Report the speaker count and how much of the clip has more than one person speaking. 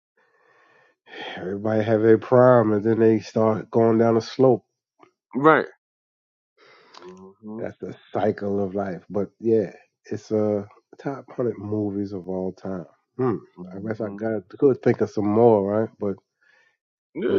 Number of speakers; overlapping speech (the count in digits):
2, about 4%